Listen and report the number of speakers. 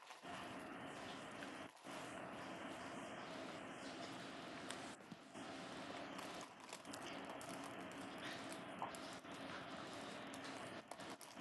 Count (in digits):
0